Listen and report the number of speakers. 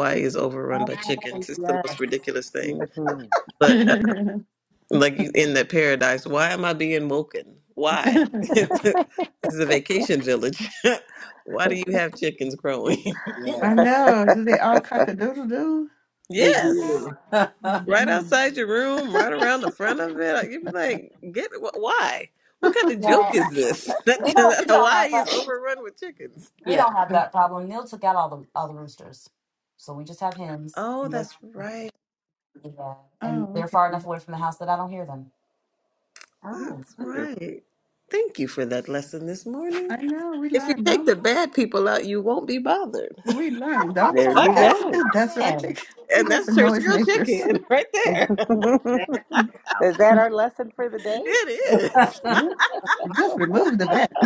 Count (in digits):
5